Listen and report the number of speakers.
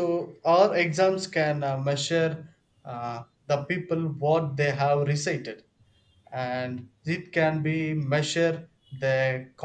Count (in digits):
1